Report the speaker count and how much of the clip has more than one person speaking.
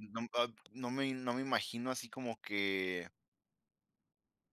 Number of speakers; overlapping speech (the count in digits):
1, no overlap